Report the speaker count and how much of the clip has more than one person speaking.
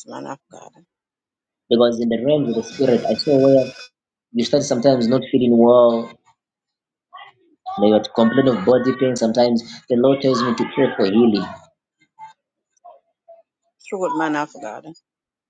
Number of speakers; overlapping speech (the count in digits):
2, no overlap